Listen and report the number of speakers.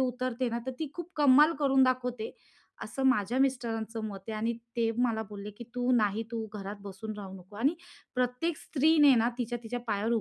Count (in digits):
1